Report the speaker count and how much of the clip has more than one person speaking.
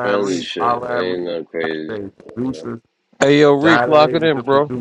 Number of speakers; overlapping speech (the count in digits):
3, about 55%